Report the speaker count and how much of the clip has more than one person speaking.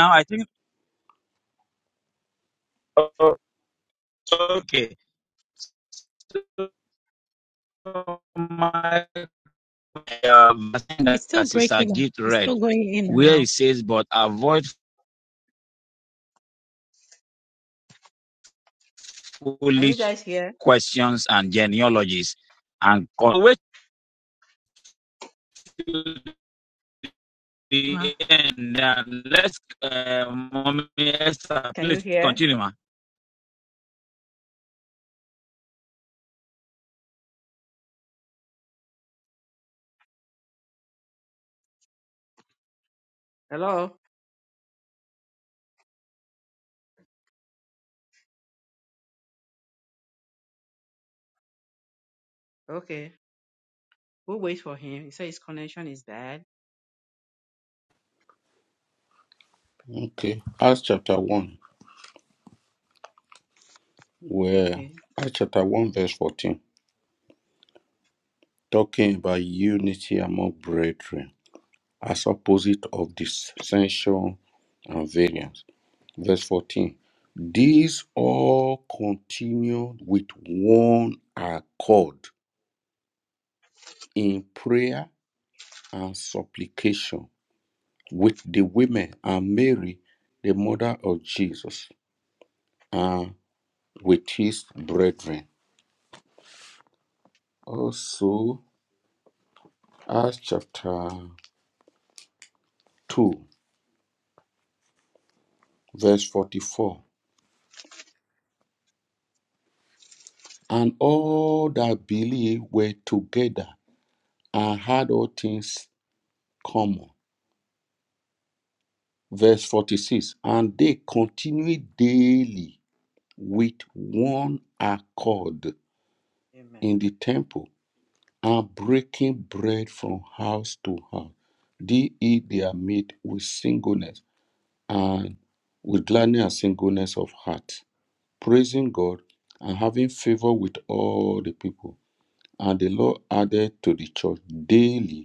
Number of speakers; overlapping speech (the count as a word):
four, about 2%